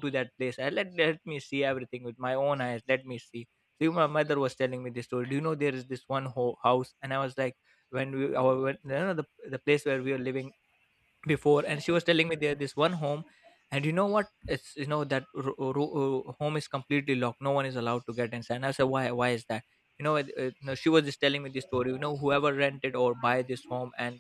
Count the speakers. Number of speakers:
1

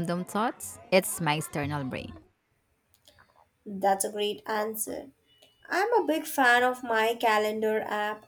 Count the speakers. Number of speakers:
2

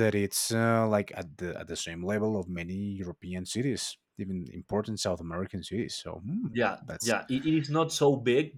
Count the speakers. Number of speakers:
2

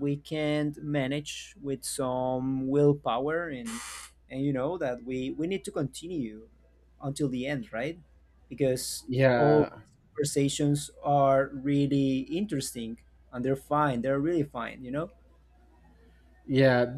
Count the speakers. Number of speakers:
2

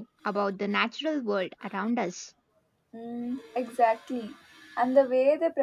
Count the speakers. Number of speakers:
2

